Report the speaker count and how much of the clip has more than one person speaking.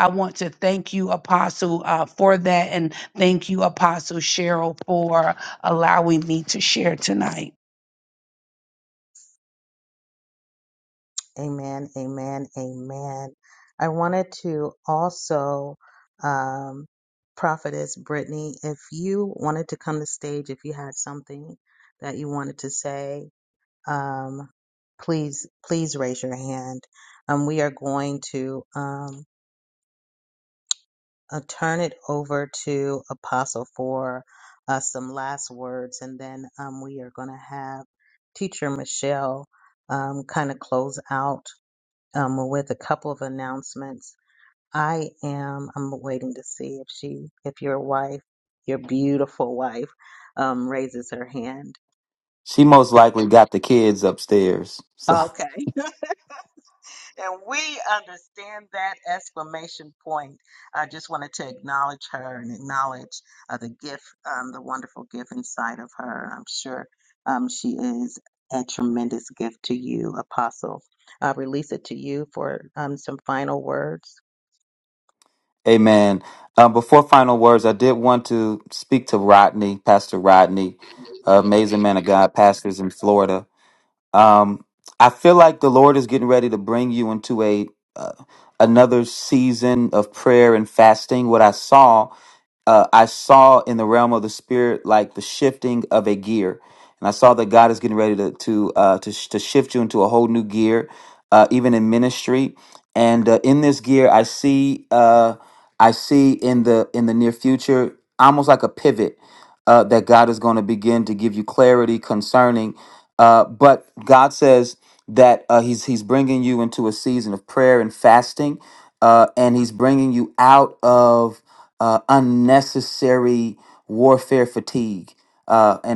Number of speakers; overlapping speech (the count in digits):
3, under 1%